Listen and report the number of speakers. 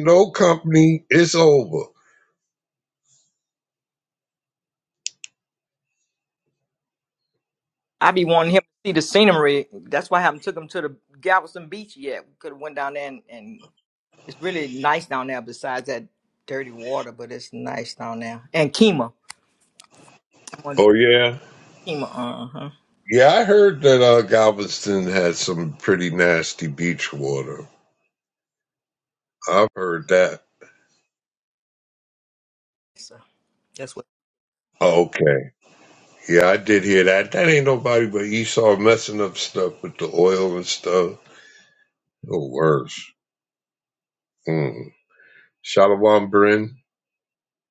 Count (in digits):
2